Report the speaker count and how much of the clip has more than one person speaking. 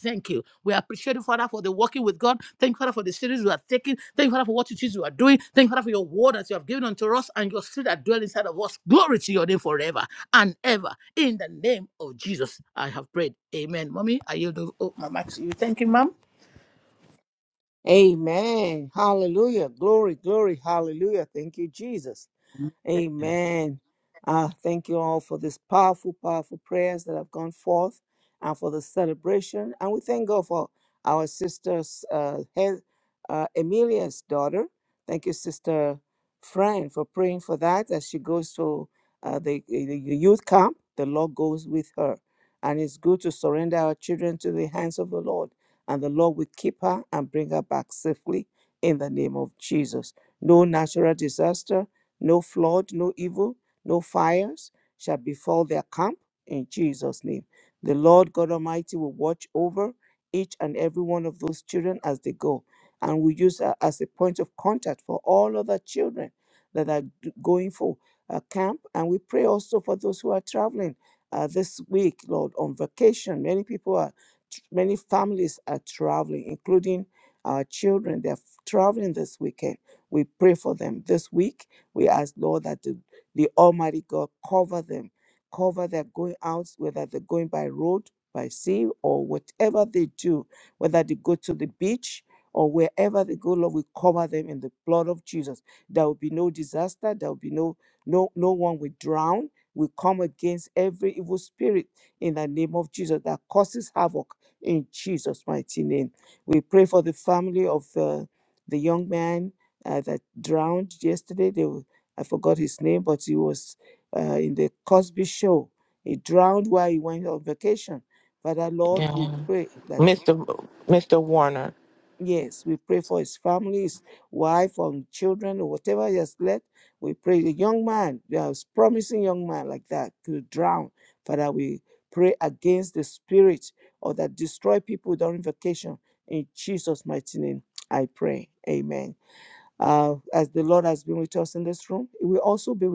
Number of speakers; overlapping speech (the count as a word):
three, under 1%